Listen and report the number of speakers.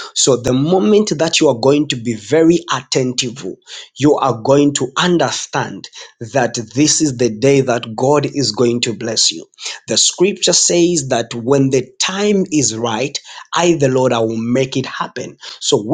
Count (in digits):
1